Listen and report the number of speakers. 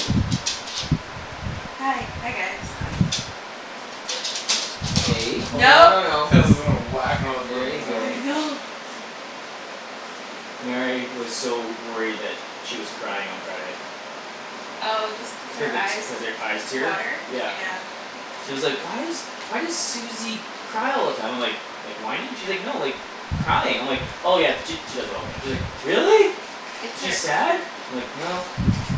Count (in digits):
3